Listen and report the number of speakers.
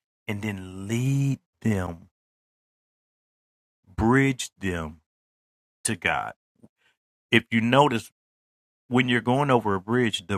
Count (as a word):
one